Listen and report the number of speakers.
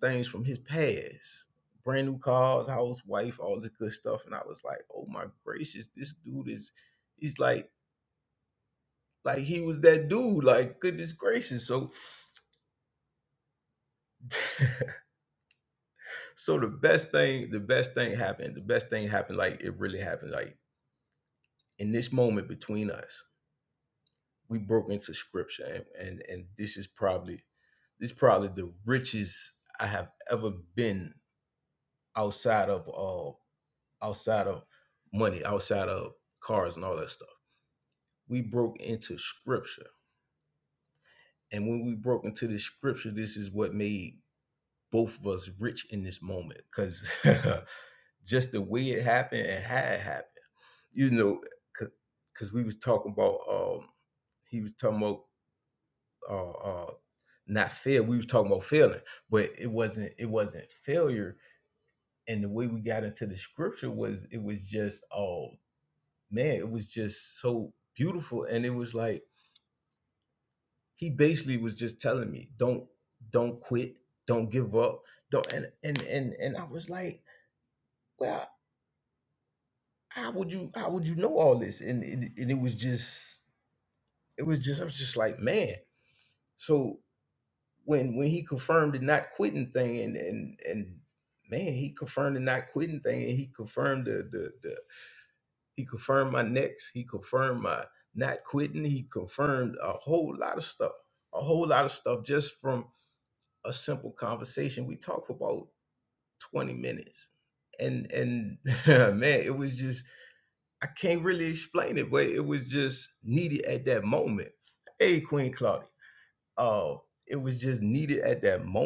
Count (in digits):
1